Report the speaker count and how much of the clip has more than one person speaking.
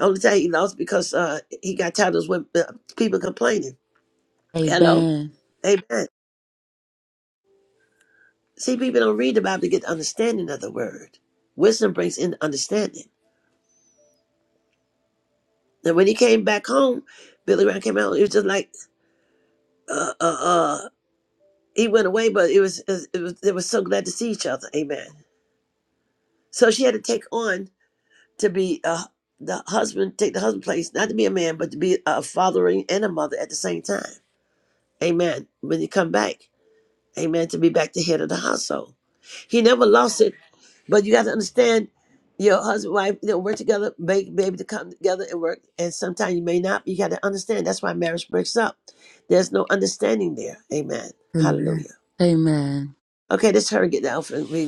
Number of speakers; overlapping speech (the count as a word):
two, about 1%